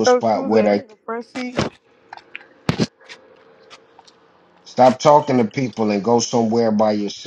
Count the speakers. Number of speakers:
2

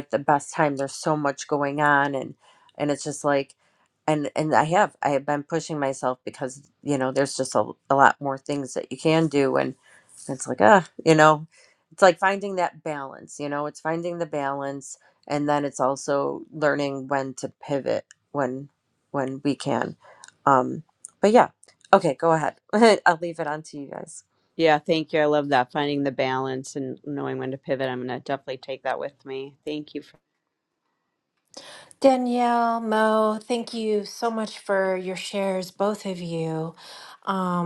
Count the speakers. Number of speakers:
3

